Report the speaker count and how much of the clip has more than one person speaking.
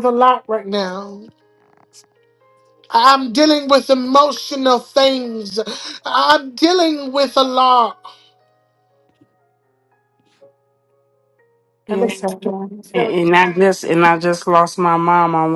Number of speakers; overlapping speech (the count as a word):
two, about 4%